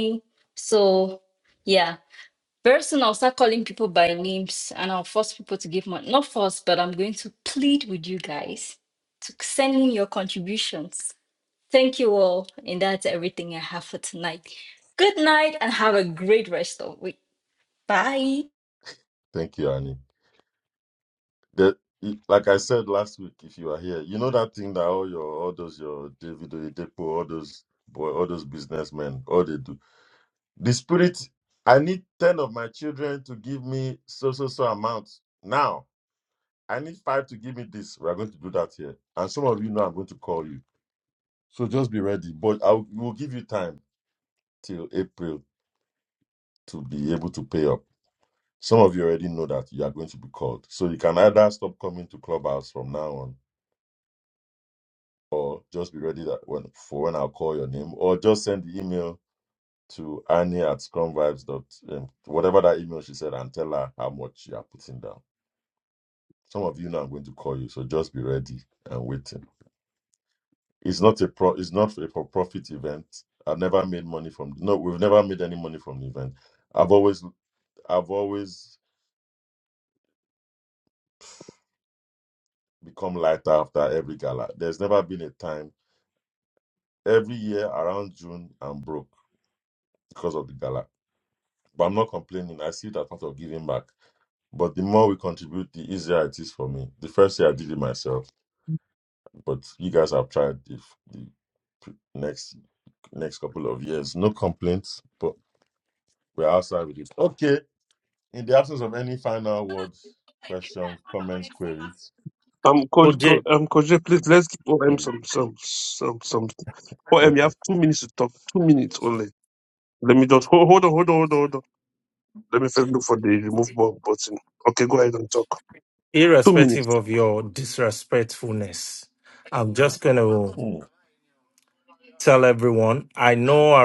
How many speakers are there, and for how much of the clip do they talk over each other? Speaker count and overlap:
4, about 1%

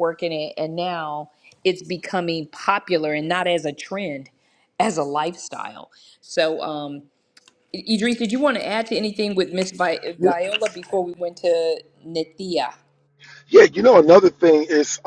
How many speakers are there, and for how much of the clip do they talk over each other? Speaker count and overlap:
2, about 1%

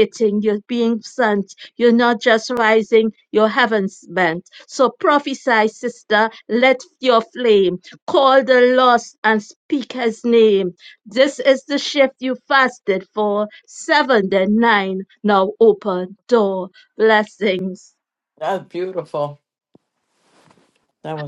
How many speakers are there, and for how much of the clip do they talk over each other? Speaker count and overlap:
2, no overlap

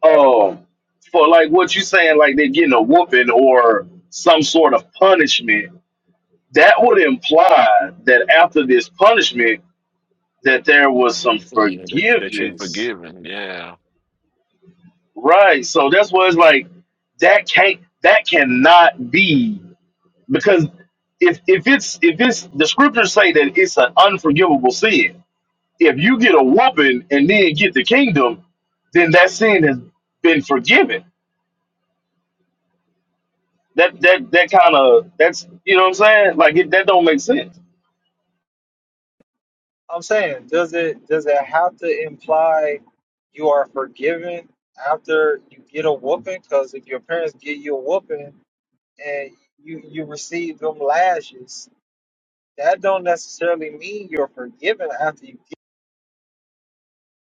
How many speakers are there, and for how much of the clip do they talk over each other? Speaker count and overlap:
3, about 2%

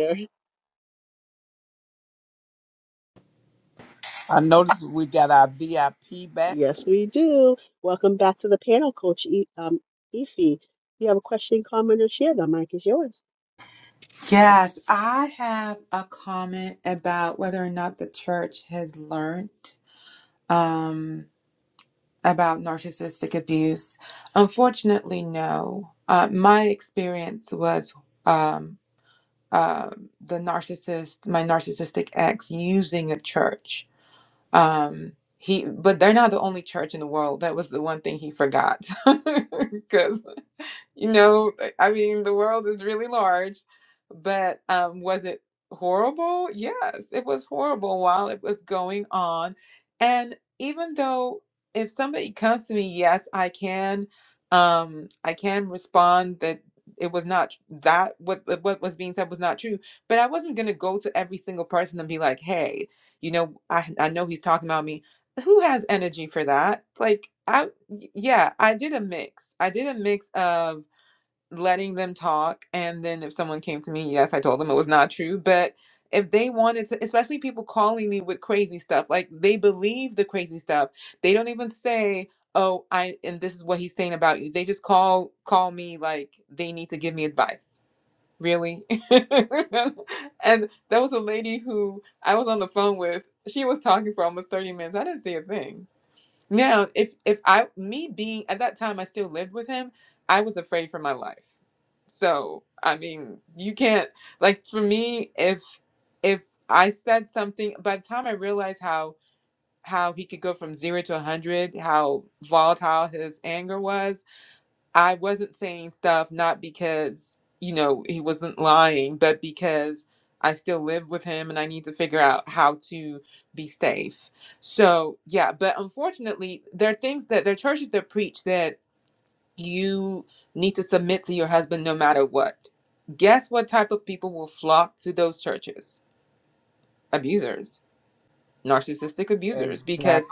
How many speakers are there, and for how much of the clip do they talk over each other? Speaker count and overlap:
3, about 1%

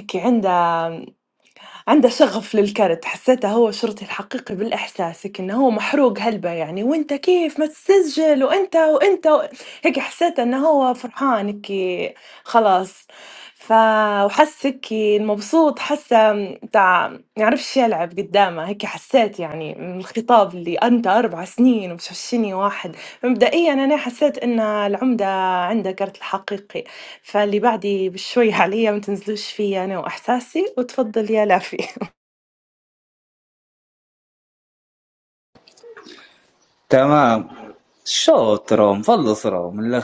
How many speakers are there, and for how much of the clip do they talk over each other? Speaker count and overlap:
2, no overlap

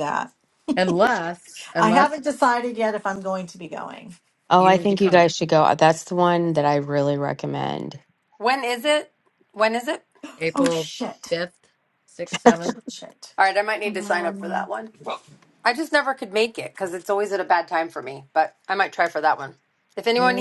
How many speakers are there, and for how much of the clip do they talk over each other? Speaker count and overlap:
4, about 14%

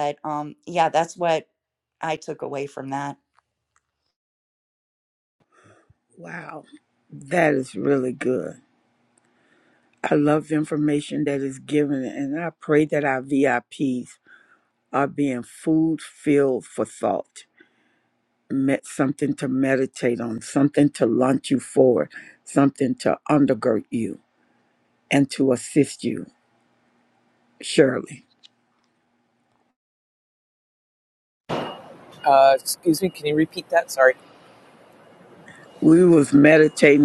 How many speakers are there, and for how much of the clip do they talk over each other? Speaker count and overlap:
3, no overlap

